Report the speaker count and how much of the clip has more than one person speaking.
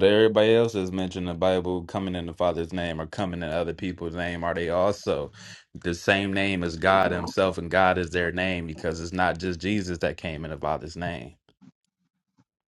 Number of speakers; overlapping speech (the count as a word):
one, no overlap